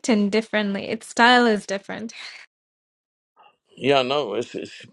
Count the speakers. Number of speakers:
two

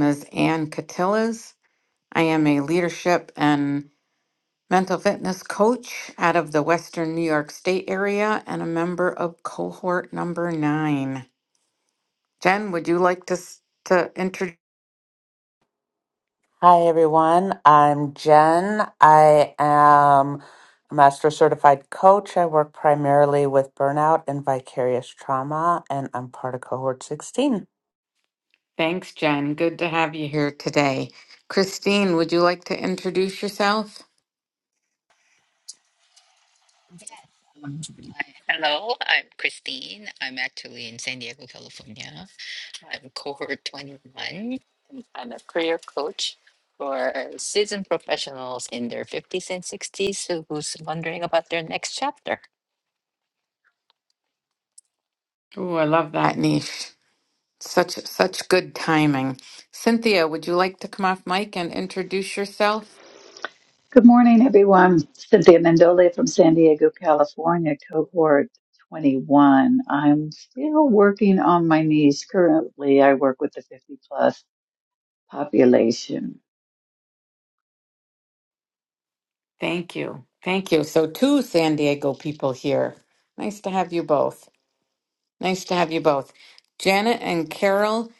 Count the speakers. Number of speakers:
four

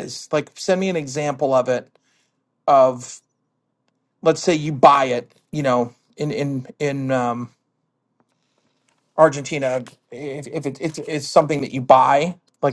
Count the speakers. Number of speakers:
one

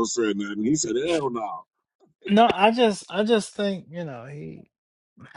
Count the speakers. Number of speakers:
two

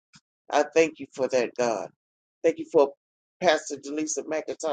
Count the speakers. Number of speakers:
one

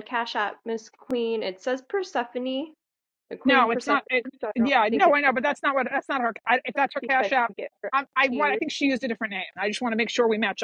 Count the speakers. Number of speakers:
two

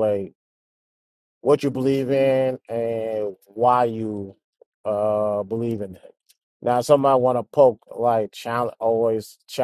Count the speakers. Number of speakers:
one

